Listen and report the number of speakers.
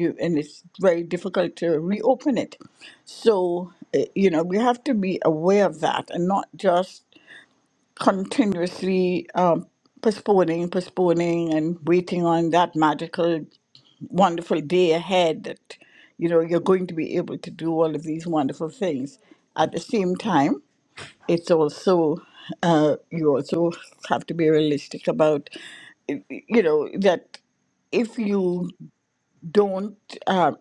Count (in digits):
1